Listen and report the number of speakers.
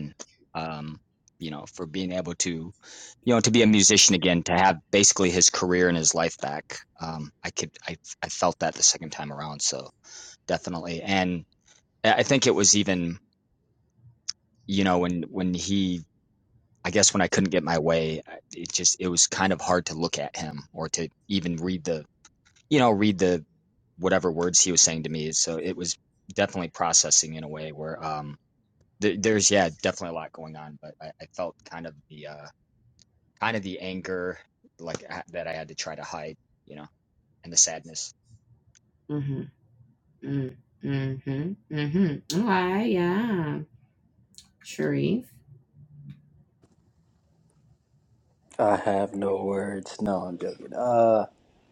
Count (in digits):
3